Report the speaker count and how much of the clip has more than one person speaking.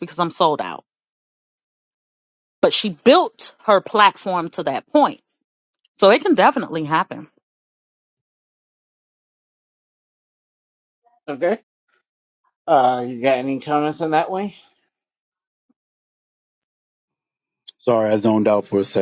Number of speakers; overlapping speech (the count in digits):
3, no overlap